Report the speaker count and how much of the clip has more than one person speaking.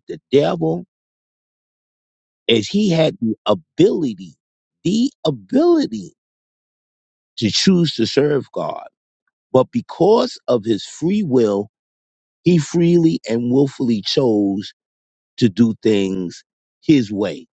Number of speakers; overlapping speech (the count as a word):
one, no overlap